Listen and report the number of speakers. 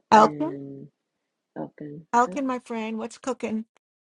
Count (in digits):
2